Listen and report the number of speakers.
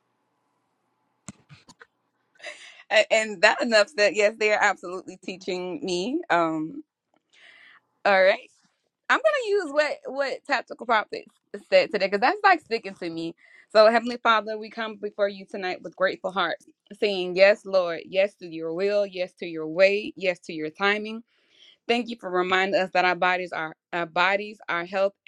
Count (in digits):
1